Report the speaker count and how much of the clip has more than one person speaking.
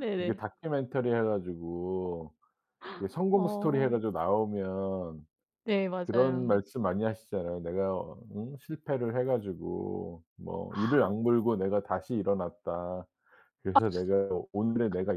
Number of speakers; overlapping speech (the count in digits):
2, about 10%